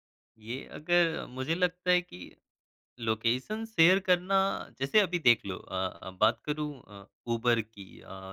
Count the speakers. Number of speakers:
one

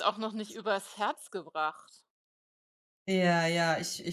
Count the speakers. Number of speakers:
two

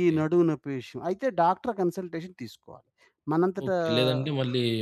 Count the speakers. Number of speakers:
two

